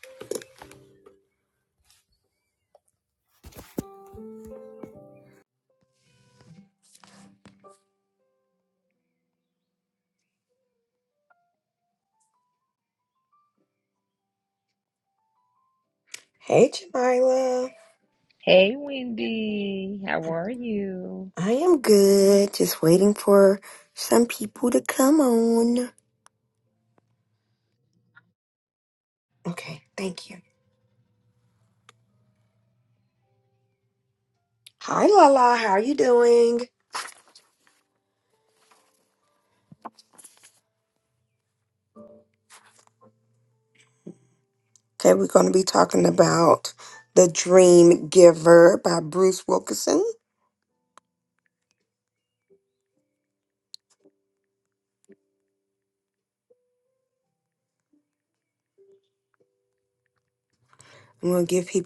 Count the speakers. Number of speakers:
2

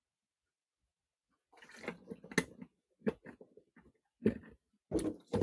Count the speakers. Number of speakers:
0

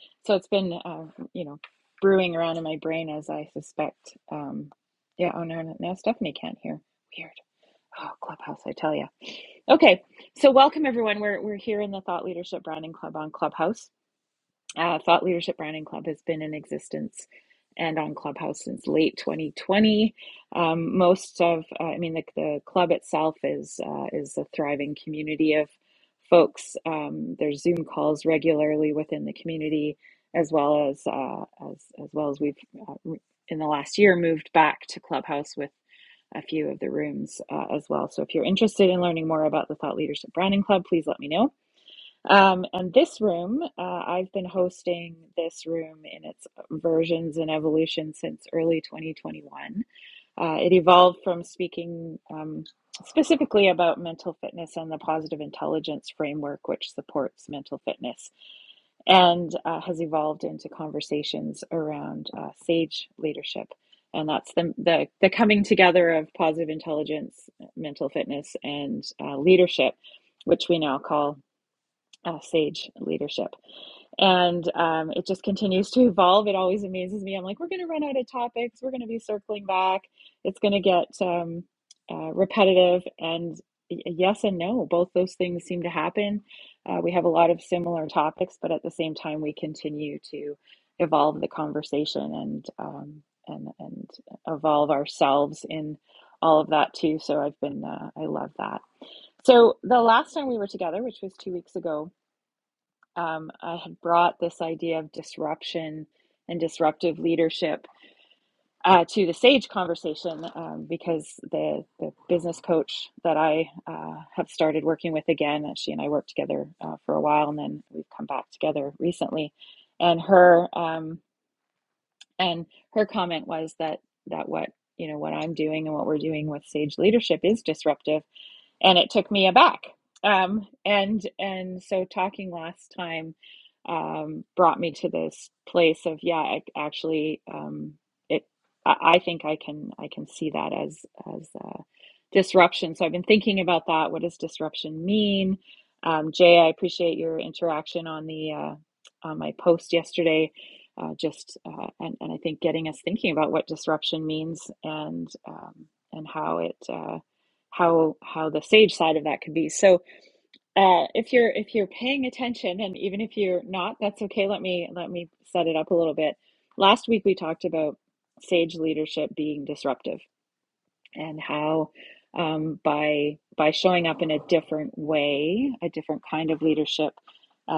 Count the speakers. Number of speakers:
1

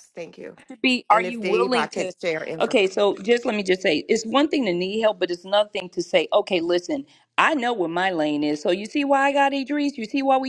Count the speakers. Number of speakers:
2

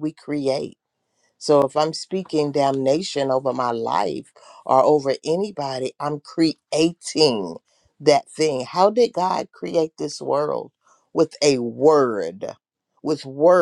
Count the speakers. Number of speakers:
1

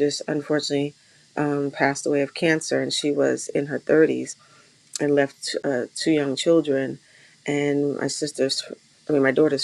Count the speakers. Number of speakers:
1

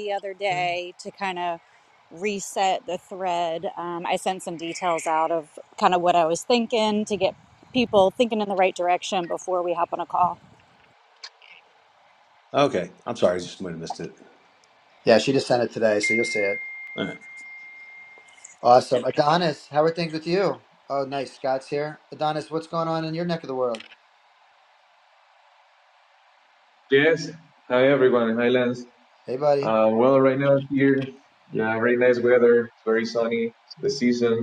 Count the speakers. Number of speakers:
4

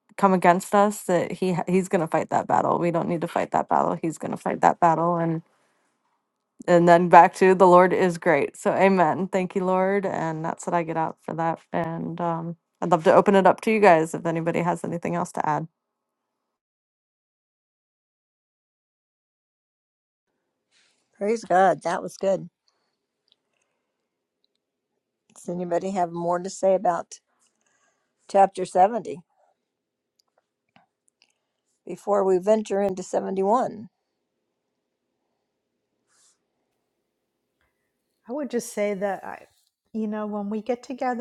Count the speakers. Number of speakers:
3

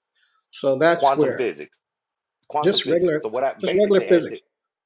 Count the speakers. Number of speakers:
2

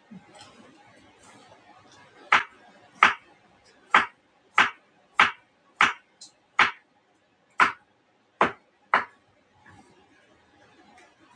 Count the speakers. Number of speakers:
0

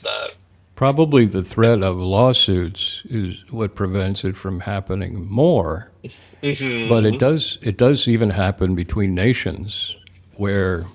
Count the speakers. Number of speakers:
2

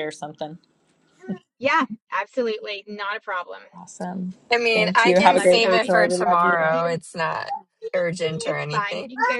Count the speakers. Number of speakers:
3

